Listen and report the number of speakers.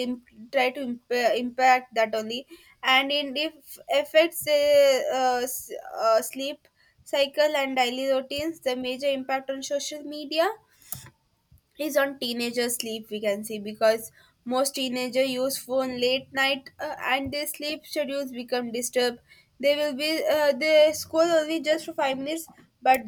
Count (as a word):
one